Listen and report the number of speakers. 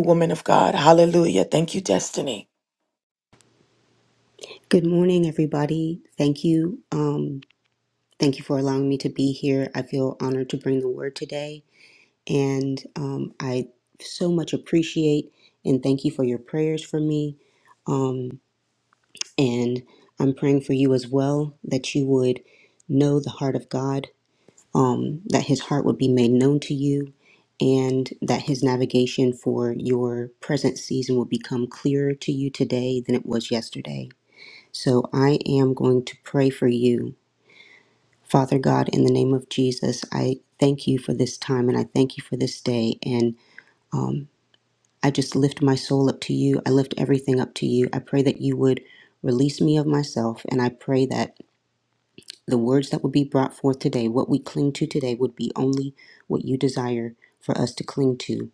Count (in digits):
2